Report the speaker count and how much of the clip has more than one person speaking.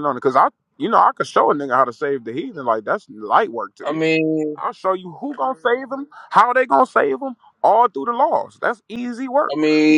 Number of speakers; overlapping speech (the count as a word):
two, about 2%